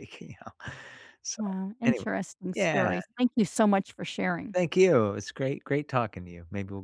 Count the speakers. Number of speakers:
2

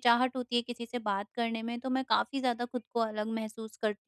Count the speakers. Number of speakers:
1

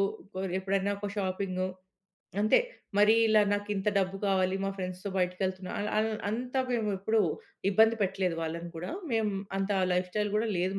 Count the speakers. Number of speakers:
1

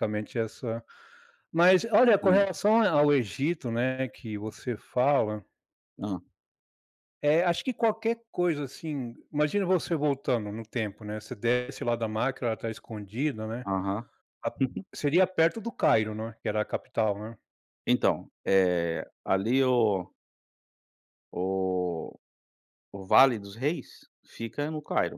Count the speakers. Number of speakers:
2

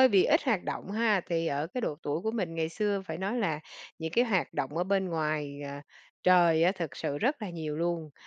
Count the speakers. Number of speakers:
1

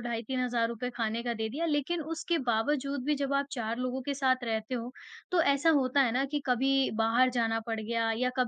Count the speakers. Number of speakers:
1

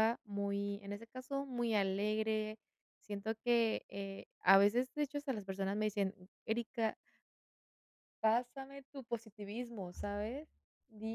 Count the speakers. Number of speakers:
1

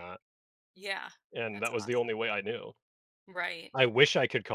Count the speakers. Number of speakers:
2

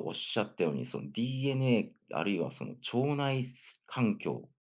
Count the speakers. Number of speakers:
1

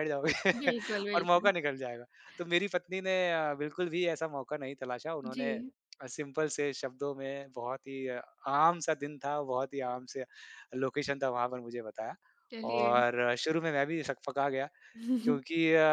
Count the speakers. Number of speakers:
2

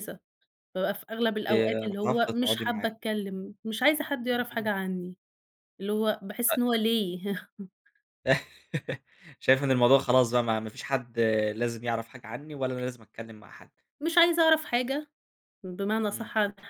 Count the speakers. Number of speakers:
2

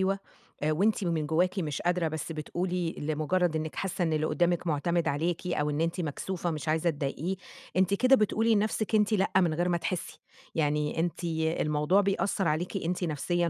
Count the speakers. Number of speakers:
1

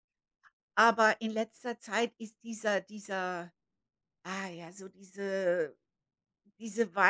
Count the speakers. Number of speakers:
1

